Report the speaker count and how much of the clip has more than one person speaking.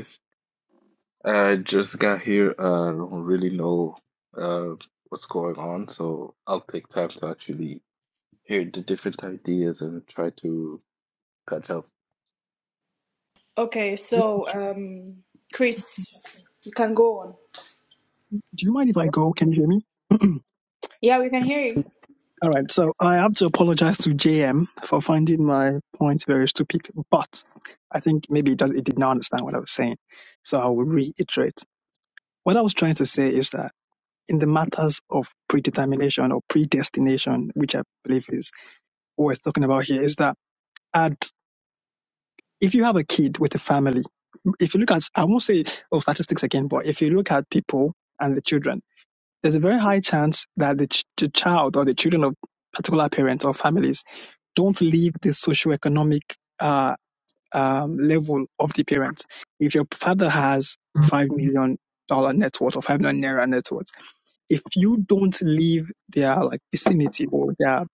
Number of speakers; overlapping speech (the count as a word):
three, no overlap